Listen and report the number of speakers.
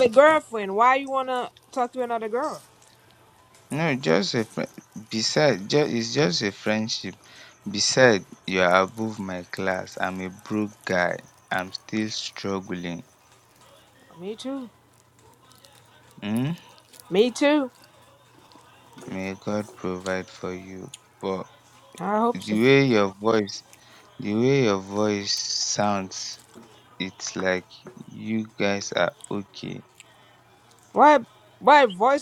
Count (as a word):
two